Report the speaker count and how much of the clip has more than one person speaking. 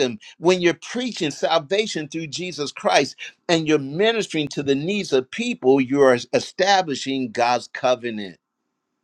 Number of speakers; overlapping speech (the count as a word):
one, no overlap